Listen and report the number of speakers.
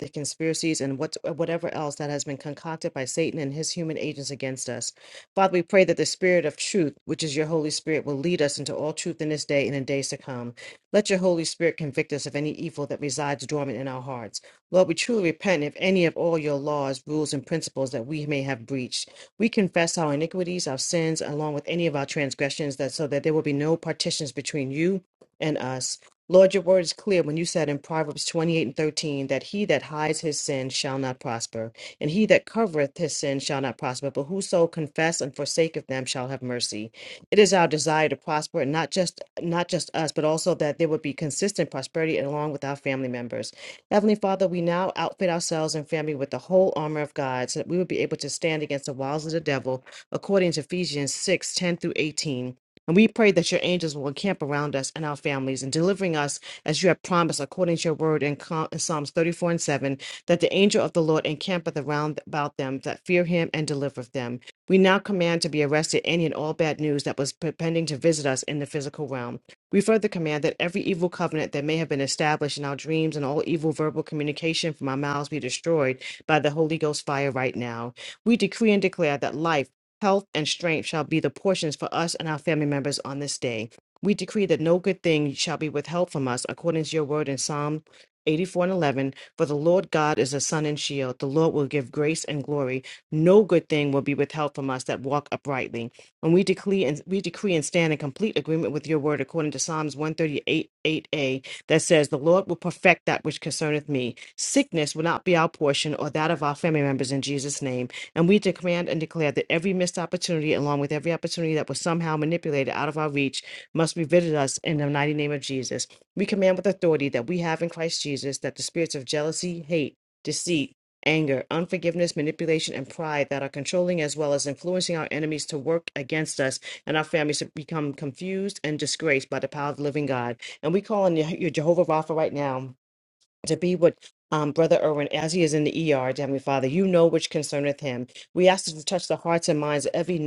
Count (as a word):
one